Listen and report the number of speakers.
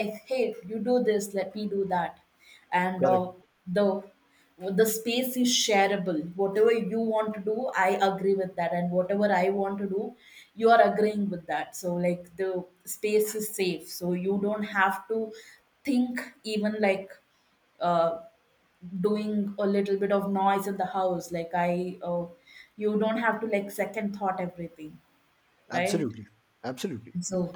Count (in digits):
2